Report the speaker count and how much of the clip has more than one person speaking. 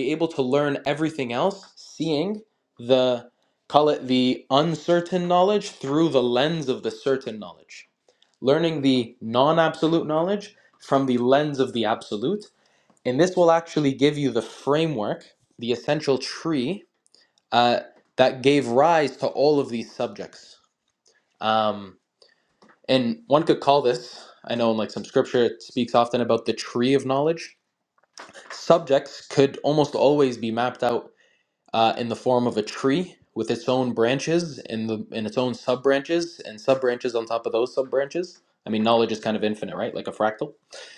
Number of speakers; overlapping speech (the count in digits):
1, no overlap